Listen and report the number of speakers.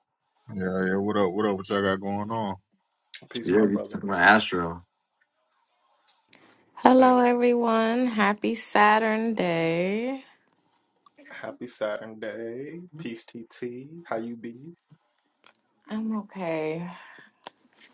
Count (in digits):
4